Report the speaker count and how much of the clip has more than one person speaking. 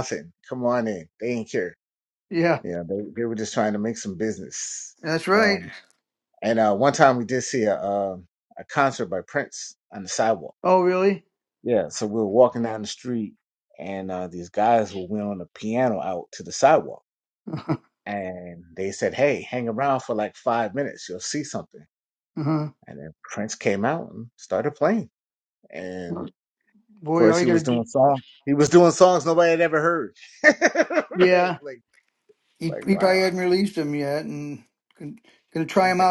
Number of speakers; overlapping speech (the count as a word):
two, about 6%